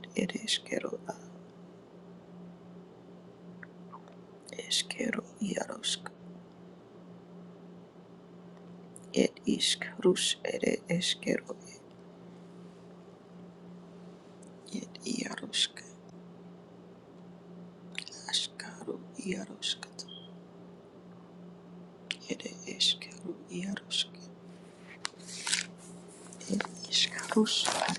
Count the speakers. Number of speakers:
1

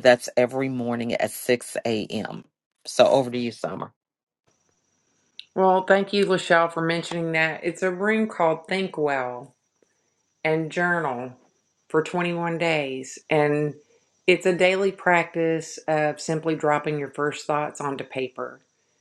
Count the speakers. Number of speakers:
2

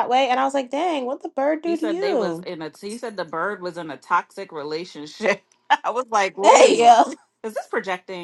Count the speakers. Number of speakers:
2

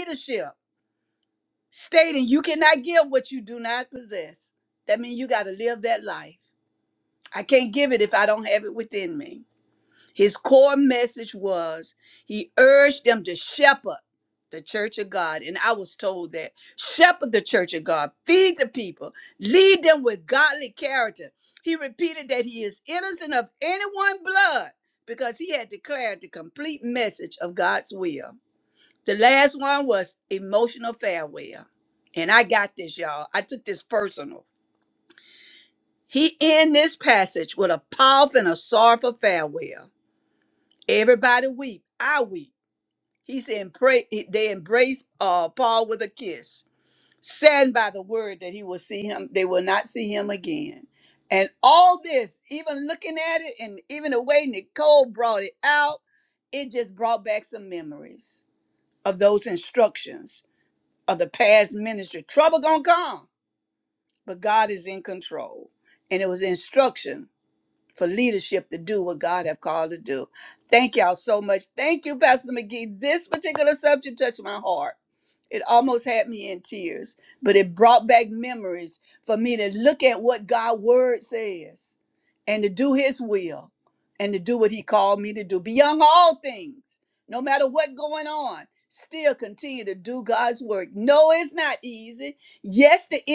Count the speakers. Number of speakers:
1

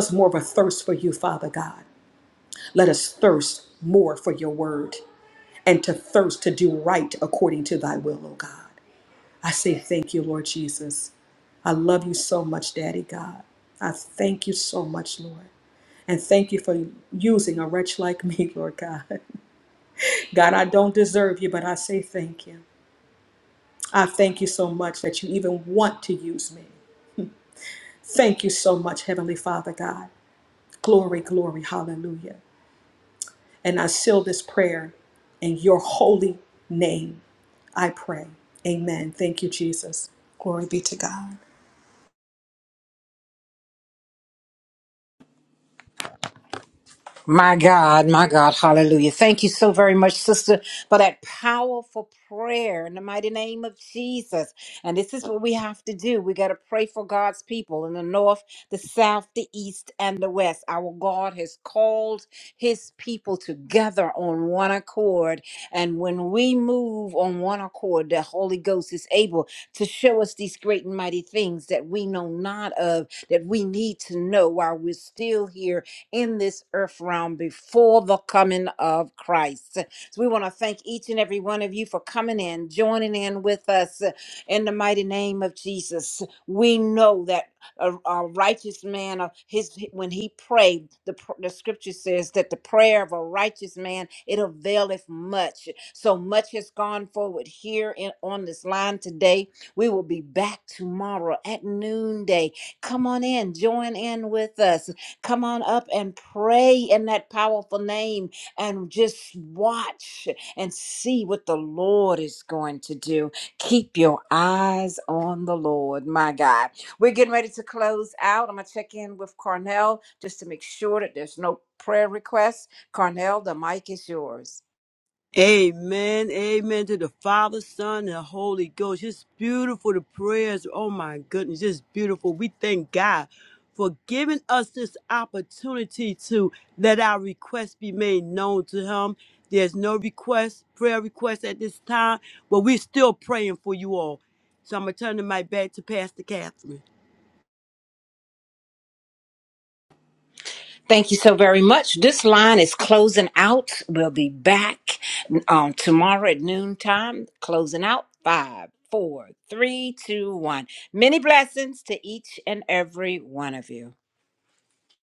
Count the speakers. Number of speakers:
3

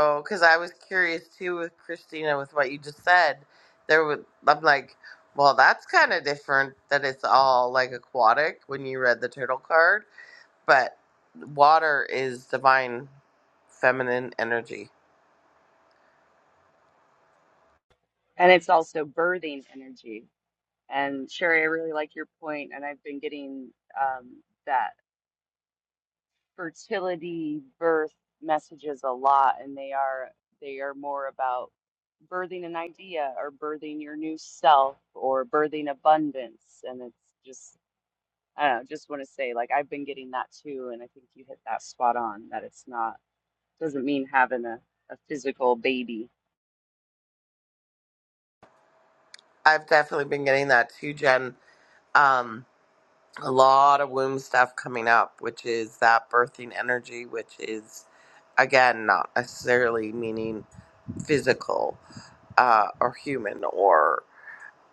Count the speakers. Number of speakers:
2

